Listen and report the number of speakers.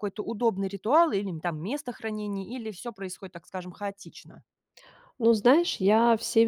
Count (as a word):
two